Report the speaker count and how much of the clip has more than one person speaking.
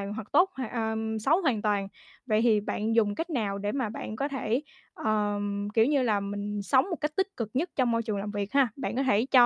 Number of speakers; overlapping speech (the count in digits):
1, no overlap